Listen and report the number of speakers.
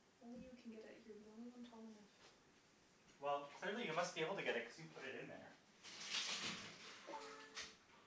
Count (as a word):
two